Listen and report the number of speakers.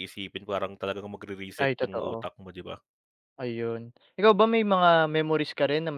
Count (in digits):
2